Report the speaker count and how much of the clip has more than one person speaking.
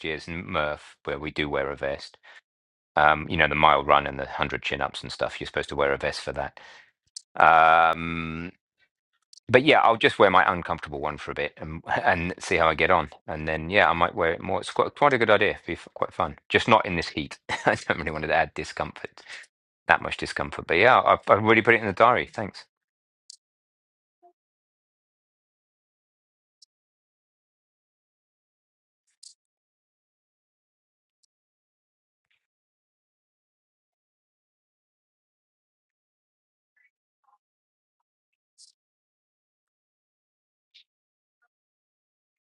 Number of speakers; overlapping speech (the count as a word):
one, no overlap